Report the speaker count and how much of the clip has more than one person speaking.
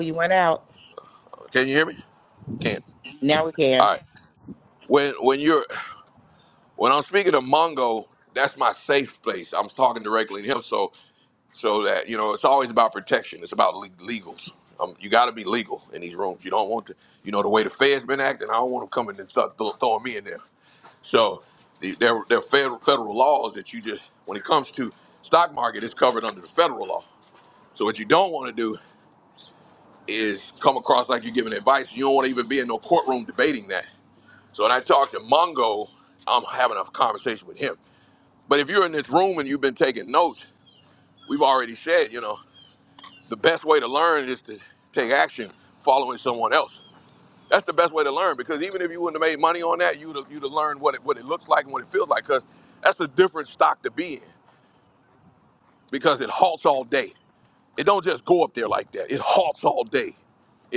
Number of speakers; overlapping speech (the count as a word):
two, under 1%